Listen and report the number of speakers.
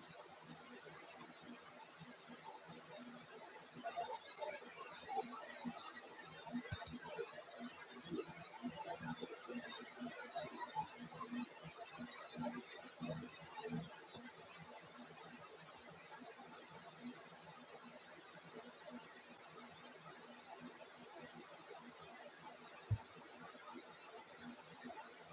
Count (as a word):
zero